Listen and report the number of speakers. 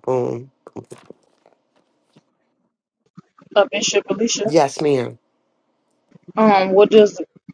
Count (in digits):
2